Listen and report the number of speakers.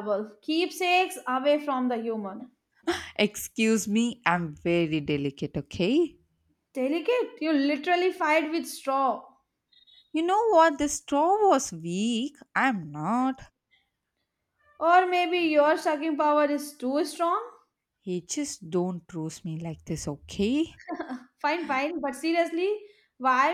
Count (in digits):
2